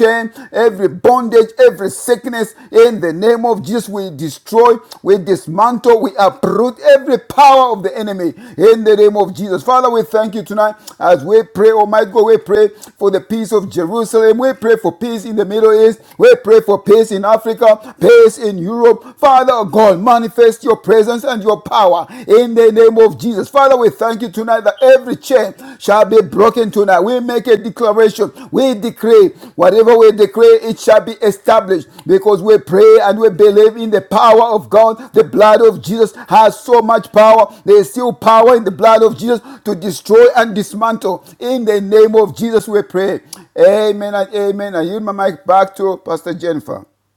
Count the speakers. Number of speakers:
one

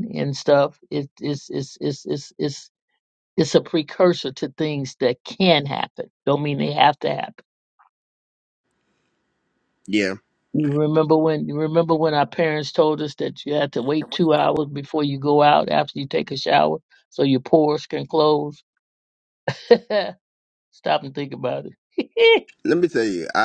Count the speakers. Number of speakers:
two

